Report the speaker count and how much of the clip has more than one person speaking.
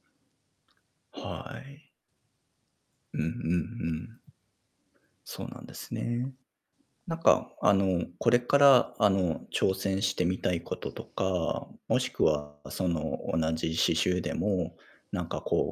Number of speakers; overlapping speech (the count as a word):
one, no overlap